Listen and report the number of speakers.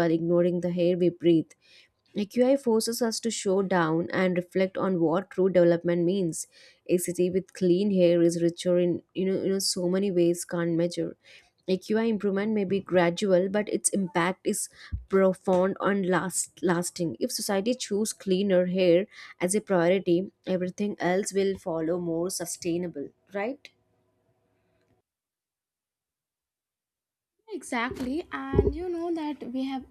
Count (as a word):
two